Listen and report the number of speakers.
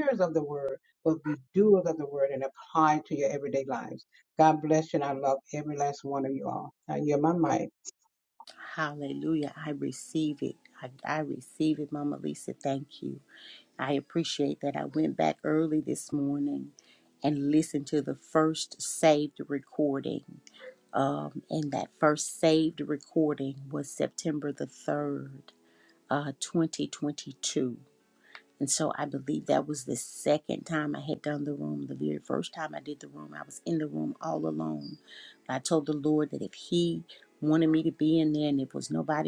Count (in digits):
2